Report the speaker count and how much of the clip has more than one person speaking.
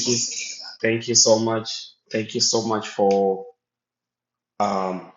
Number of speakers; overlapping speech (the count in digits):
1, no overlap